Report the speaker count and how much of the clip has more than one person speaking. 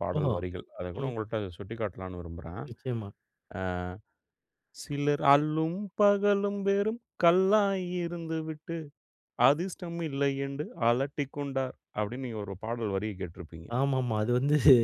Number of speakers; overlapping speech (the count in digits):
2, about 3%